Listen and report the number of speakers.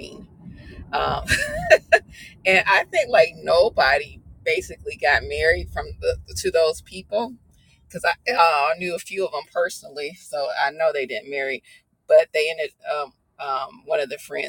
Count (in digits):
1